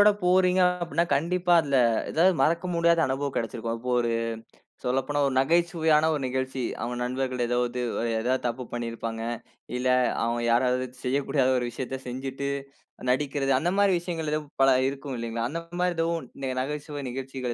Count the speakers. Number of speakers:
1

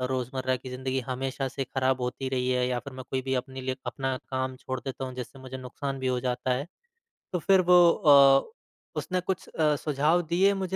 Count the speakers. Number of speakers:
1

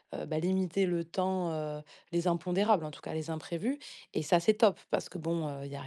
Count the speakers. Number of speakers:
1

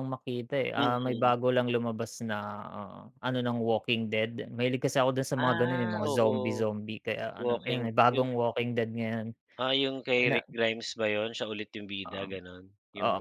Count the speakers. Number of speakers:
2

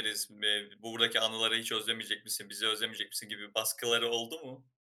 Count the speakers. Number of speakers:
1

